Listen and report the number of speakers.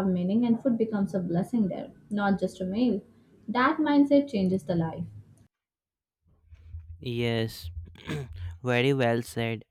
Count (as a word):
two